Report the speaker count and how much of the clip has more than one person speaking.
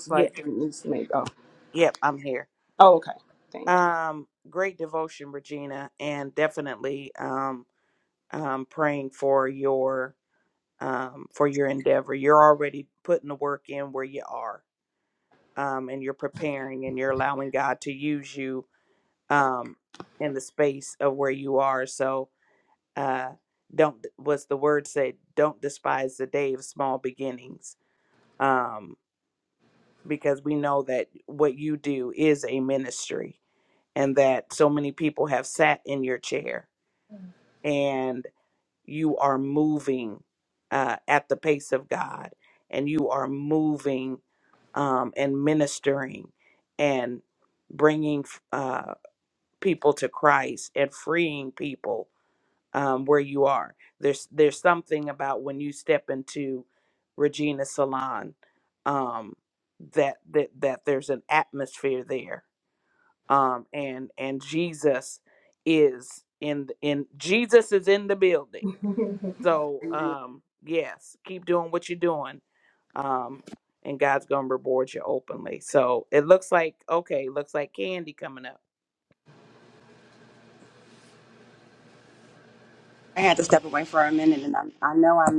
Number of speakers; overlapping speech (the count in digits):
3, under 1%